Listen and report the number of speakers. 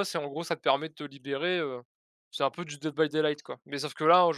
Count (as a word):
one